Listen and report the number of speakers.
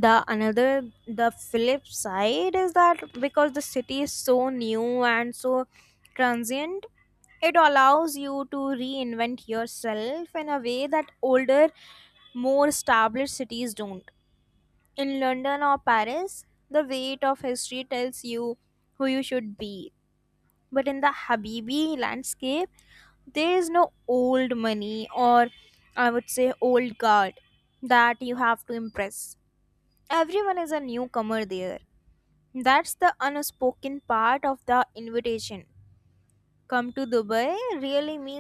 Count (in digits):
1